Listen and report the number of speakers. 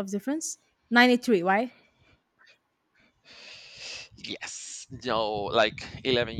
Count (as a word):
two